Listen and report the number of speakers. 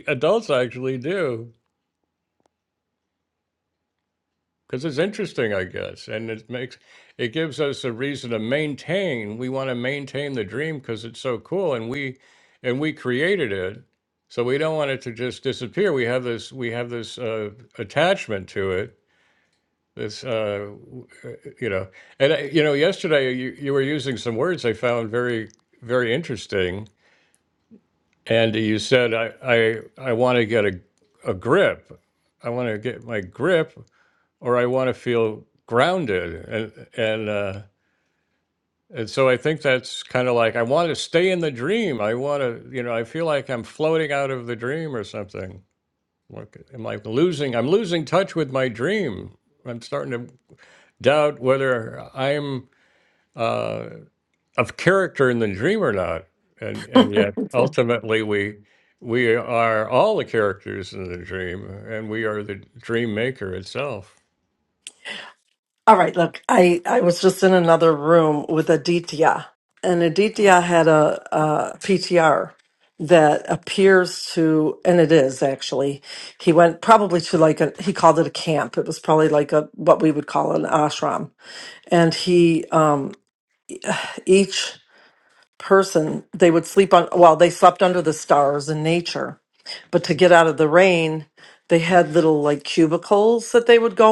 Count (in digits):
2